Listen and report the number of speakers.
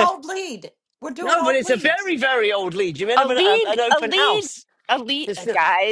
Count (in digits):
3